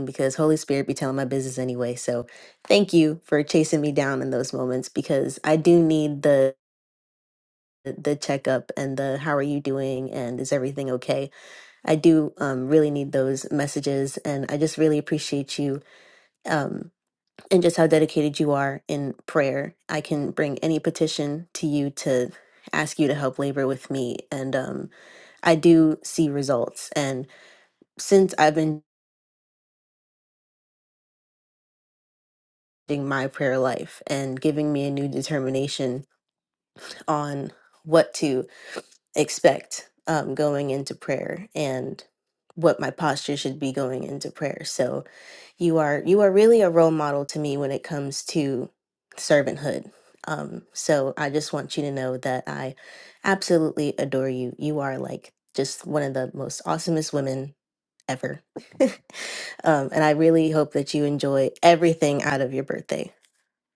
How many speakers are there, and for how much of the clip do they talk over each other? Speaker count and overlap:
1, no overlap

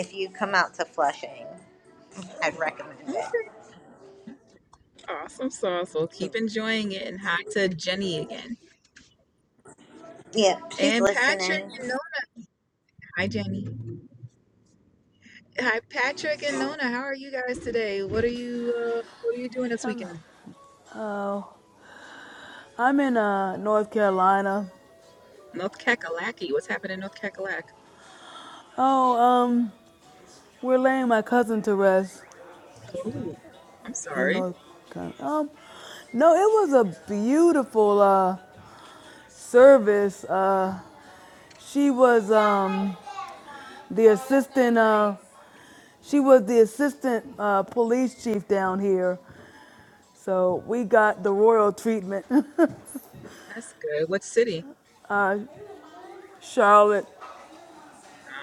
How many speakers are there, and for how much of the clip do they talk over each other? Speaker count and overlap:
3, about 2%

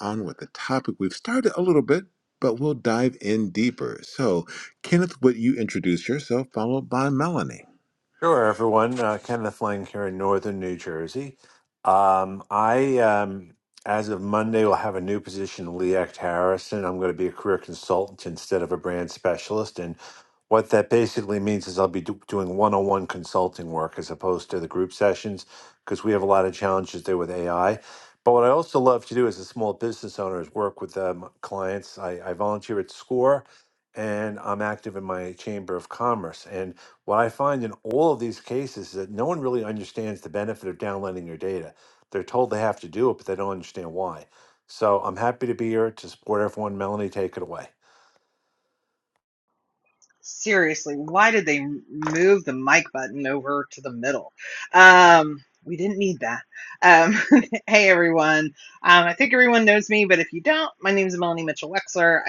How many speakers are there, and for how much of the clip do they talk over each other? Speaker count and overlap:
3, no overlap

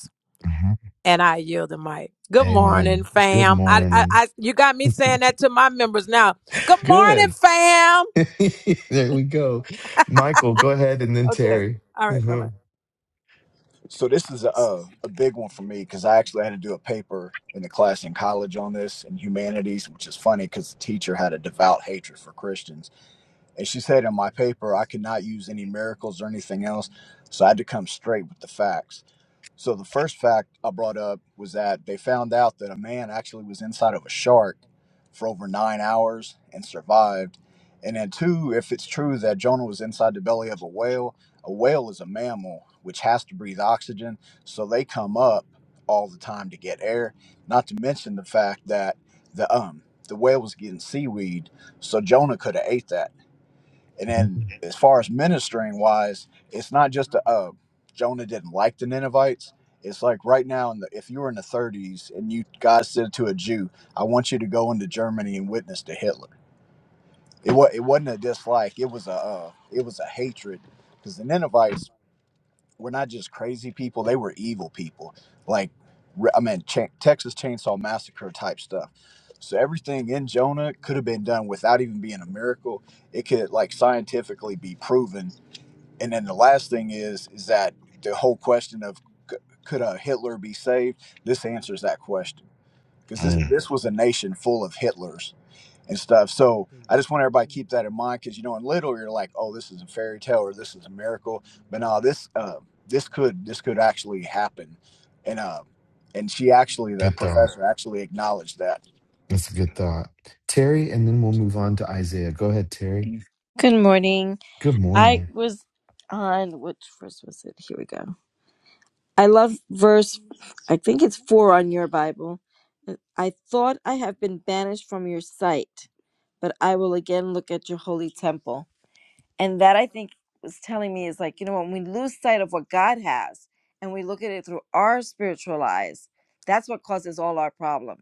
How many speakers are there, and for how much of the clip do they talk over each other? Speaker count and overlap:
4, about 3%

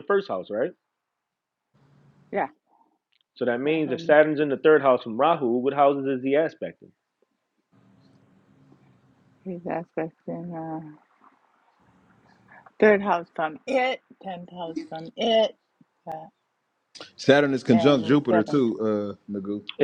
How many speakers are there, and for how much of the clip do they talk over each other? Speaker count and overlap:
3, about 7%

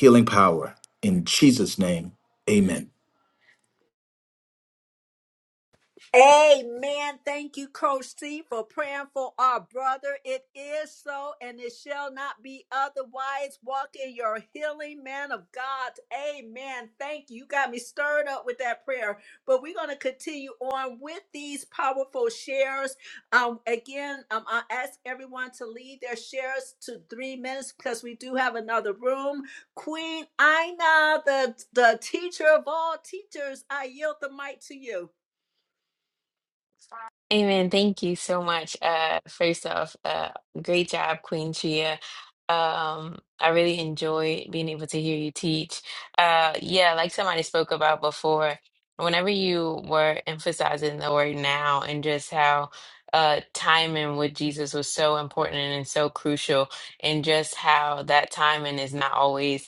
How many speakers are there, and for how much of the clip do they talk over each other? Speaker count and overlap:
3, no overlap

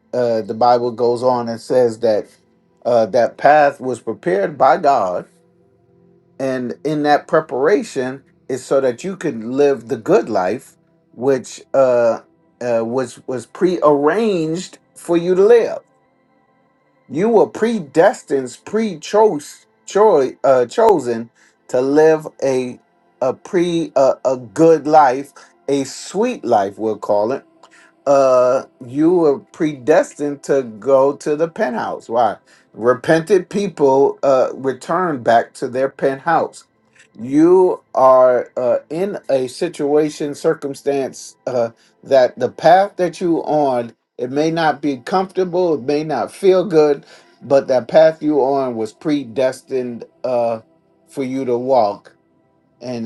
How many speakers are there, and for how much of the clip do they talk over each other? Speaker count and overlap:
1, no overlap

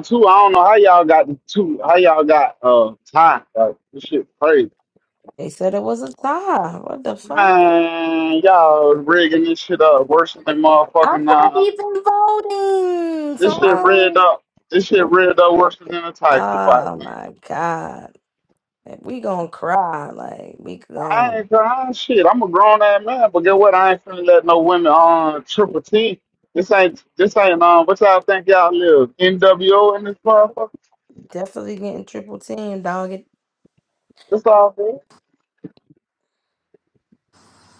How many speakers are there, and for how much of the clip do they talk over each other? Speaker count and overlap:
2, about 8%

